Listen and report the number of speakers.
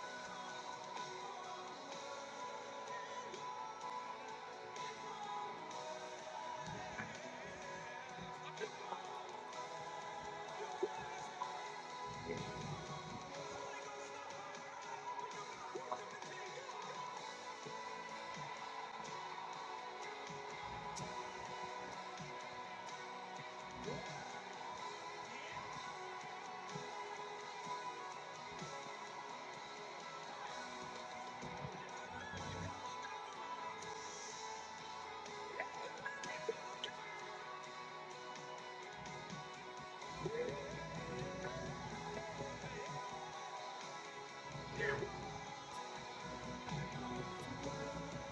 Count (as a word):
zero